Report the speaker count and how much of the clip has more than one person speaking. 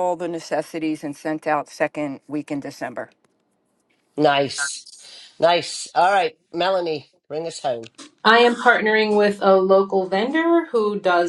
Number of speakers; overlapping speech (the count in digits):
3, no overlap